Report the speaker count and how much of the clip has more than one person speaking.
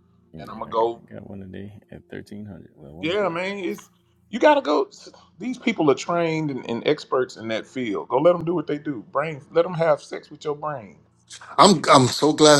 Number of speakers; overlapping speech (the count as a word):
three, about 8%